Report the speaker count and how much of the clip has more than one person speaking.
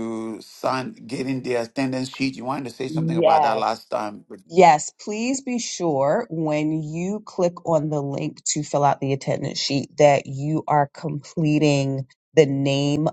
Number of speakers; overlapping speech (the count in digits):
2, about 5%